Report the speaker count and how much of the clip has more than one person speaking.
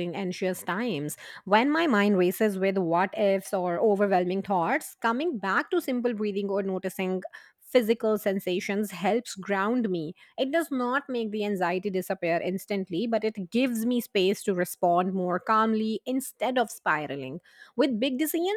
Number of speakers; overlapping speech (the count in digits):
1, no overlap